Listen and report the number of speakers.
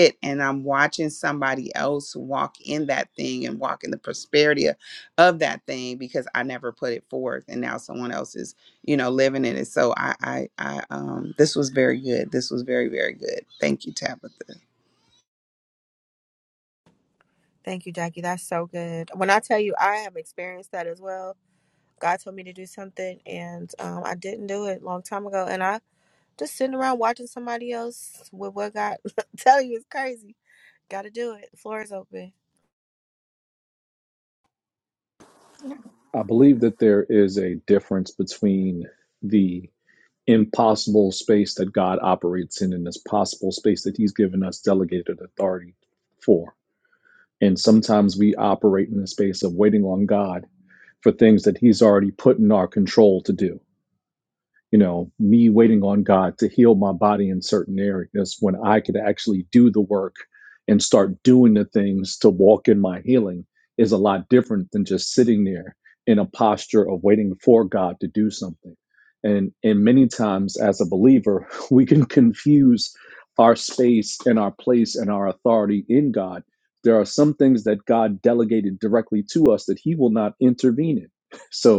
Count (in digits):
3